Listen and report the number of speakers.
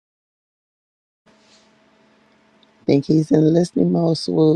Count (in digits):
1